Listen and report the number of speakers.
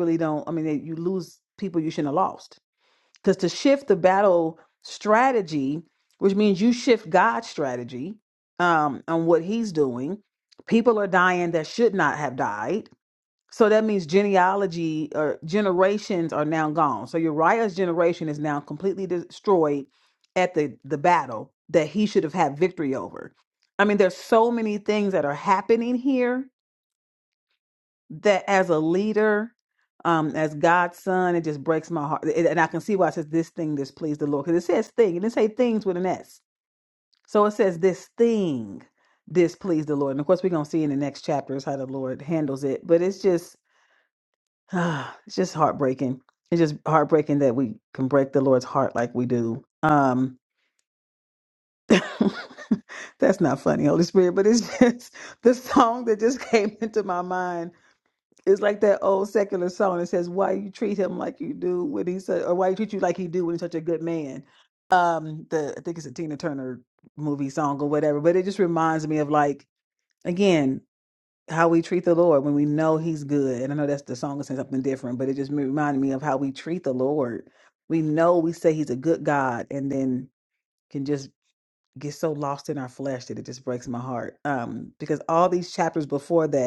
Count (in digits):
1